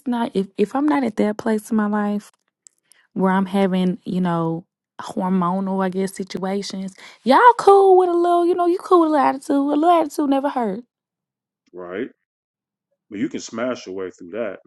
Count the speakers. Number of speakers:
two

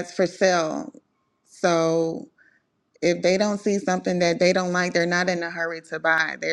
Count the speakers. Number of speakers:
one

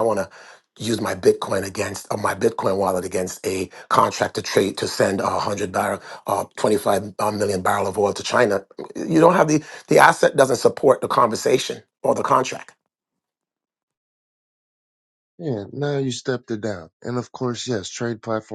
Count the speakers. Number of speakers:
two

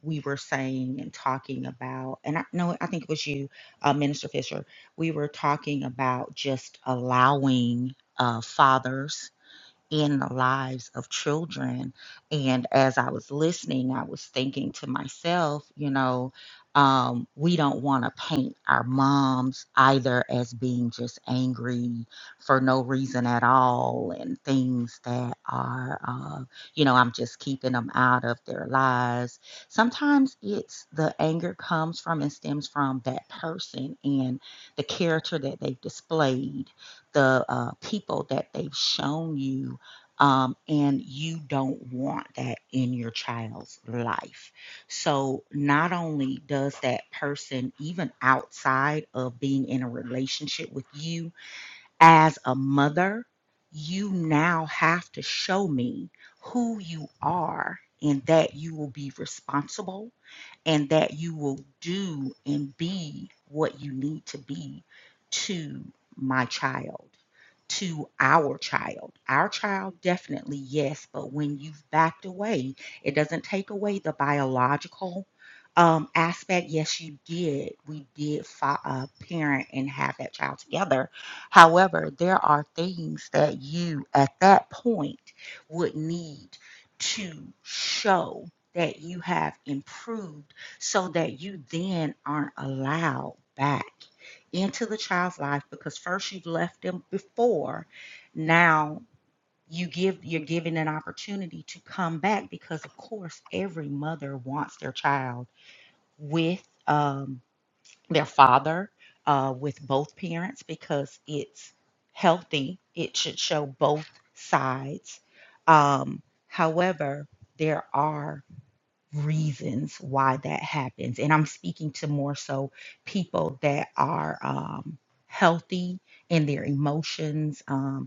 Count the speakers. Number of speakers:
one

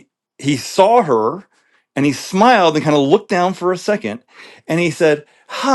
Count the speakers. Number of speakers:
one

